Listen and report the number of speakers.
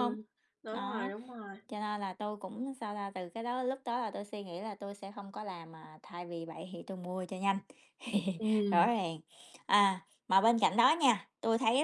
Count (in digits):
2